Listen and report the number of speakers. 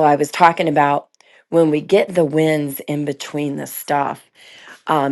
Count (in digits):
1